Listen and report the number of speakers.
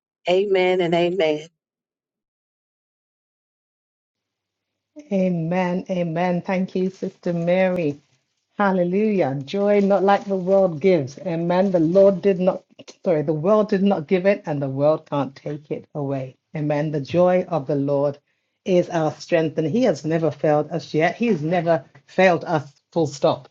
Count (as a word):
two